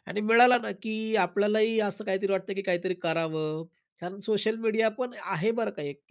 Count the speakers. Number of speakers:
1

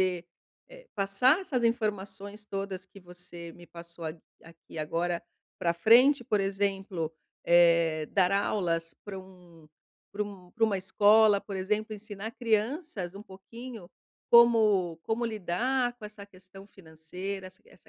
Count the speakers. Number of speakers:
1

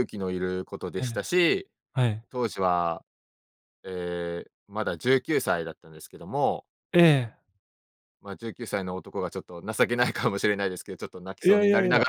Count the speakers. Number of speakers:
2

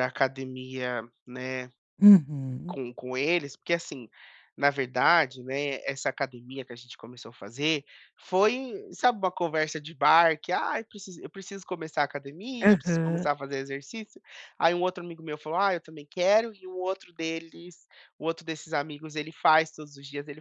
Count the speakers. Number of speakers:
2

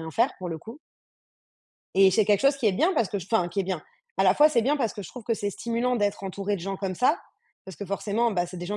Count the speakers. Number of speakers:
1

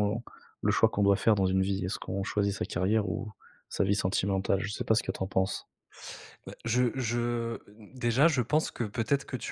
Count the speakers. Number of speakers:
2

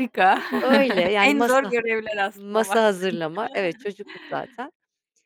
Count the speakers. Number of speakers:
2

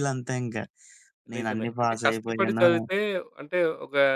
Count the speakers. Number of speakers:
2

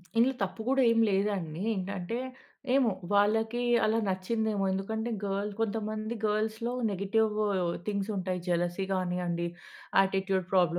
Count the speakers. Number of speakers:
1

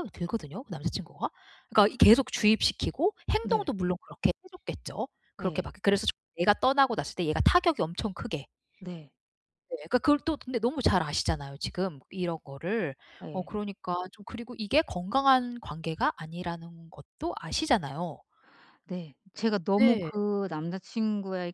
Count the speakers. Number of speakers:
2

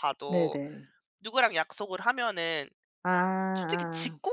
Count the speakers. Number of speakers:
2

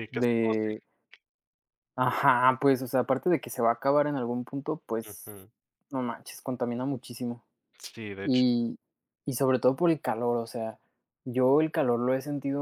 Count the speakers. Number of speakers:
2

